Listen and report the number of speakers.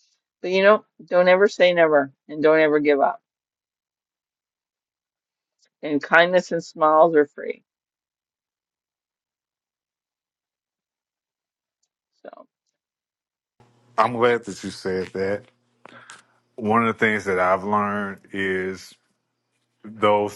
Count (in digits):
2